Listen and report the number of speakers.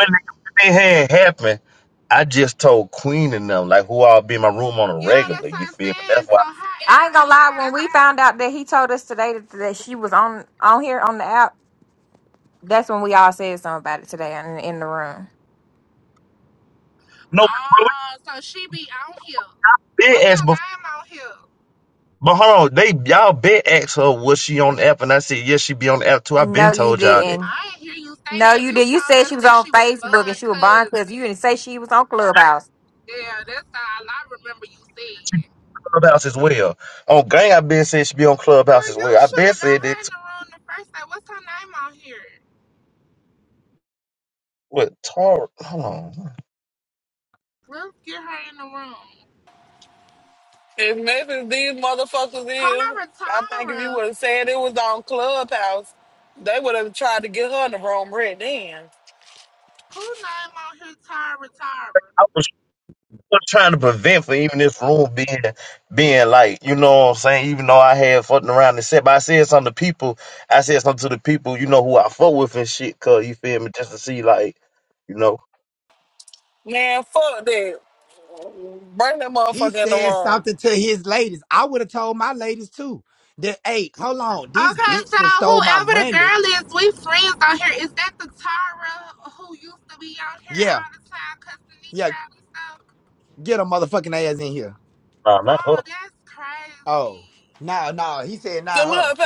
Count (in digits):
5